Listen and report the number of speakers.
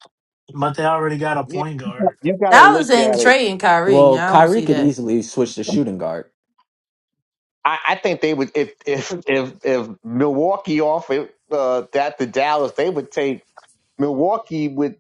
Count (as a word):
four